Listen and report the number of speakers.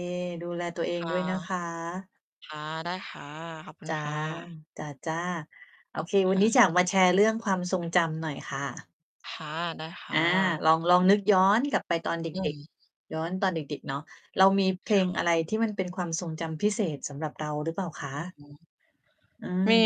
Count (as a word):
two